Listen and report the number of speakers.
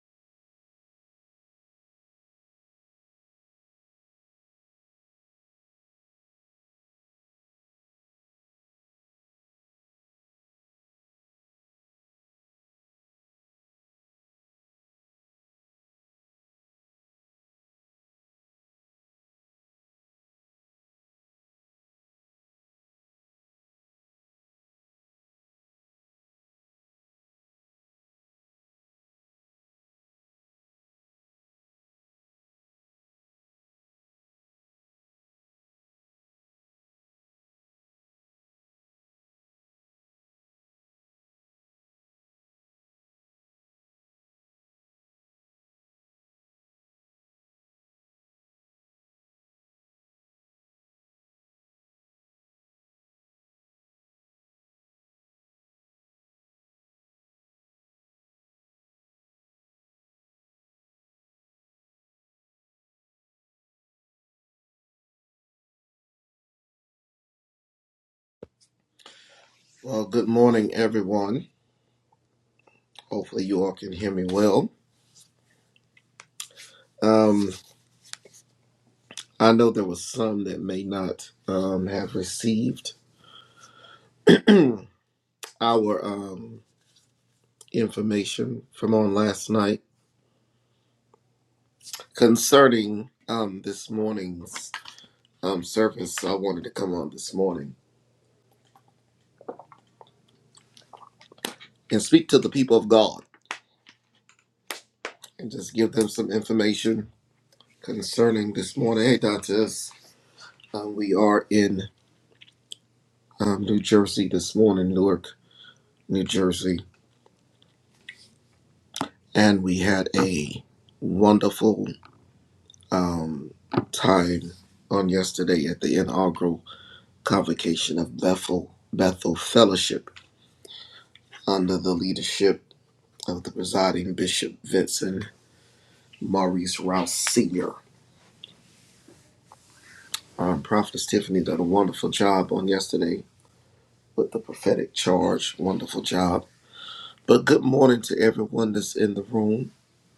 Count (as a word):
one